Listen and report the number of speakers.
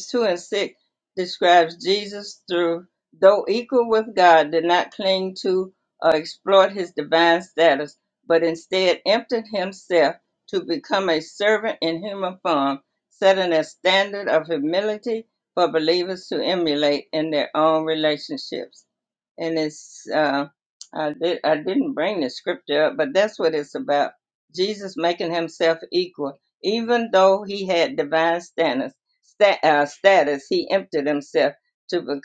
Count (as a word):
one